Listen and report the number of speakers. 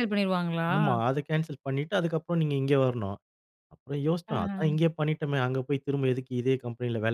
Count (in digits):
2